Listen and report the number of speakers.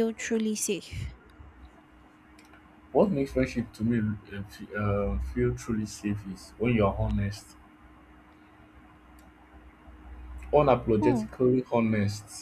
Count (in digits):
2